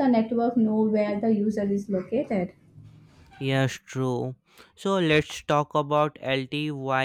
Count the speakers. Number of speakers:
2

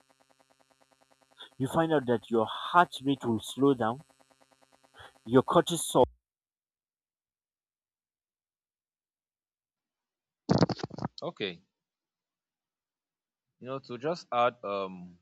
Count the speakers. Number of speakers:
2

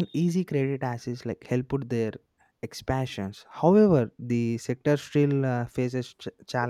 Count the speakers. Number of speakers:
1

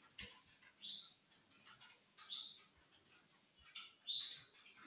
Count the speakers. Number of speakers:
0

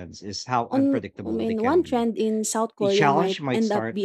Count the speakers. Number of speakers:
2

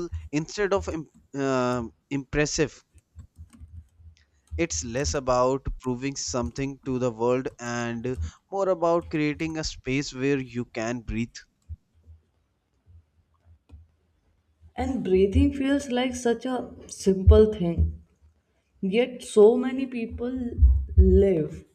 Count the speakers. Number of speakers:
2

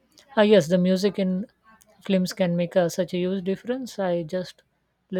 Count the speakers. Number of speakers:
1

